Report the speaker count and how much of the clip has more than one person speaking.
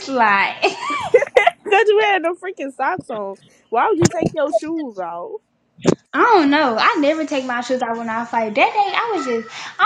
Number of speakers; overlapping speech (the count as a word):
two, no overlap